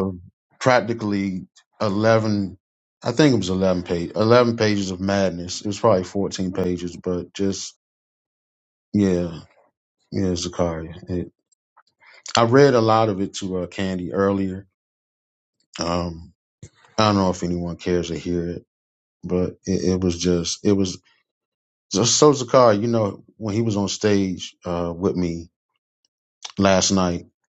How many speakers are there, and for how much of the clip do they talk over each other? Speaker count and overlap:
one, no overlap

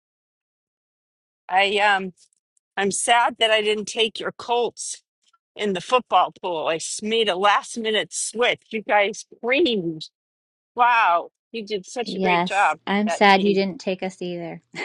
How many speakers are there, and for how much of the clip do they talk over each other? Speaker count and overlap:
two, about 10%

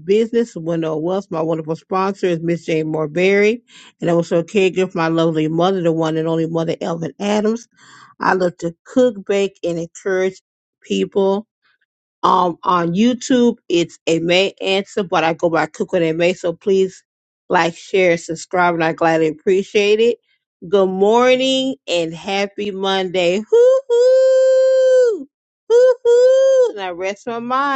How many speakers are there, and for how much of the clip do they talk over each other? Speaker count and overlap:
one, no overlap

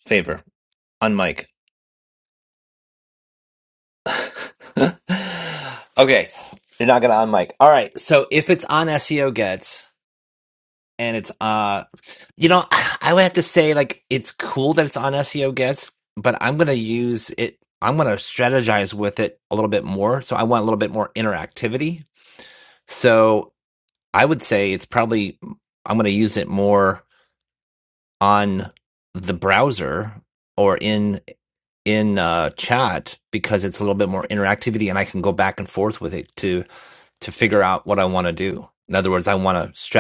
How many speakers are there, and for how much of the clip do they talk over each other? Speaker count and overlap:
one, no overlap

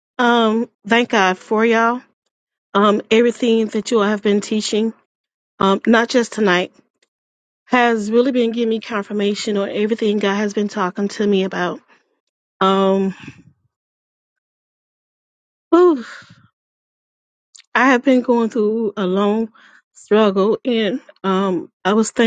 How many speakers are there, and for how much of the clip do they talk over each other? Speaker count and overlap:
one, no overlap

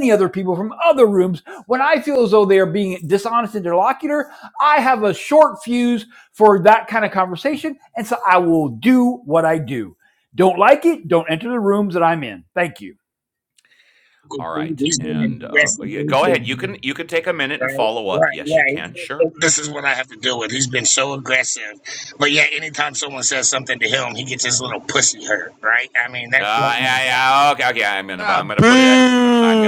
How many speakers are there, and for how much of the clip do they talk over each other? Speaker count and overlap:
four, about 17%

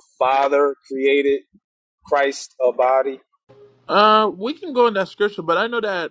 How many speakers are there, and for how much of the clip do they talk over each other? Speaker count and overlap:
two, no overlap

